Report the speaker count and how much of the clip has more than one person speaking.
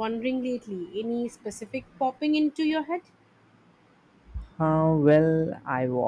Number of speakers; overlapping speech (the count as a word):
two, no overlap